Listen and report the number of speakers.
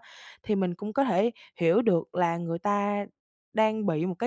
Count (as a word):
one